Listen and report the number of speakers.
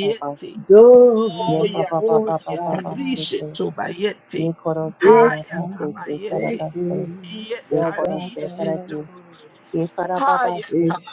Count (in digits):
3